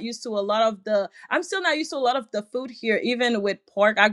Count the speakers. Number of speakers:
1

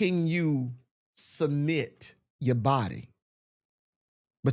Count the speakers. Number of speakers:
1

